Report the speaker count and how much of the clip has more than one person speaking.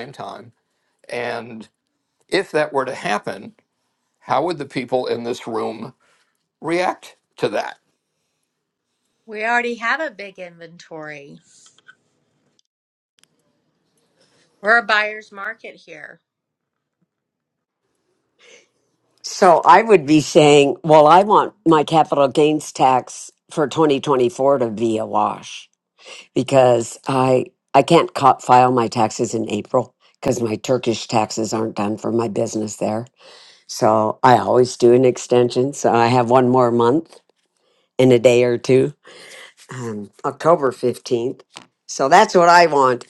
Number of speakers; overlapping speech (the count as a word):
three, no overlap